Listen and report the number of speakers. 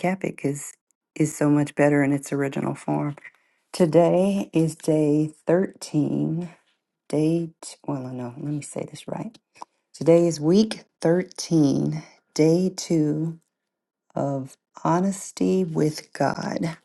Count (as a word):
one